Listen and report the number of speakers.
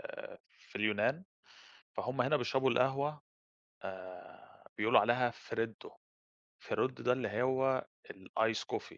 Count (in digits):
1